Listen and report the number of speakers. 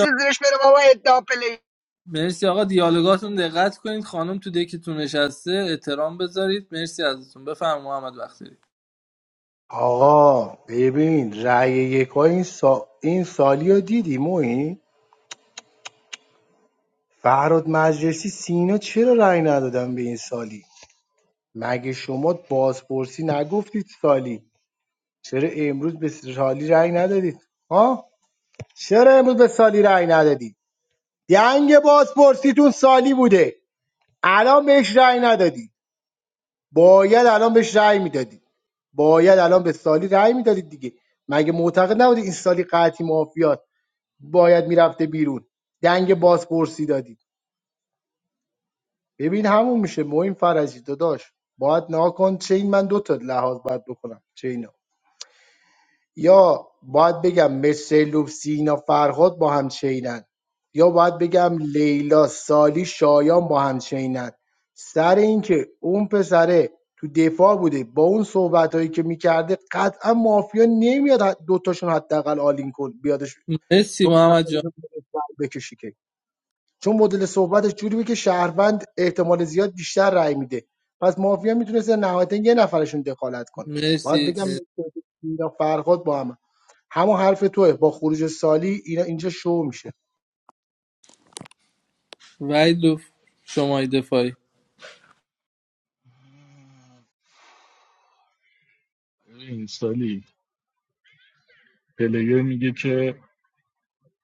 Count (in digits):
4